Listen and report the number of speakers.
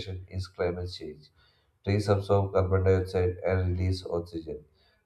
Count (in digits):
1